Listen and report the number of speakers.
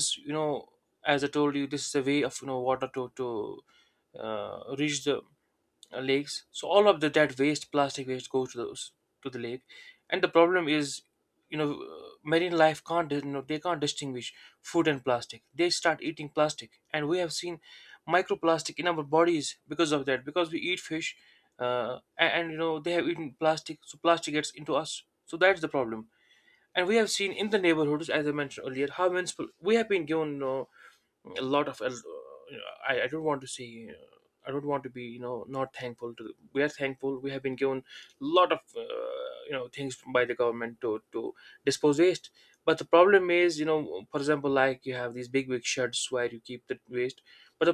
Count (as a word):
one